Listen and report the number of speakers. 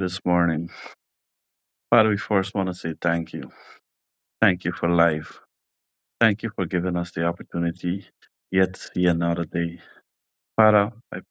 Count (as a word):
one